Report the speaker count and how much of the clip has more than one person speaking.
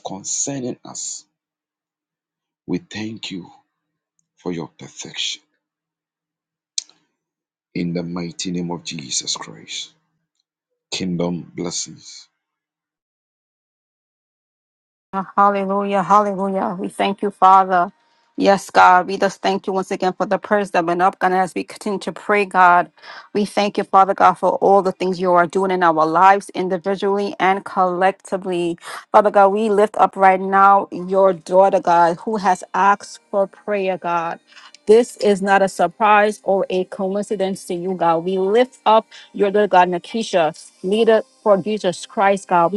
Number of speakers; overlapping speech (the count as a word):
two, no overlap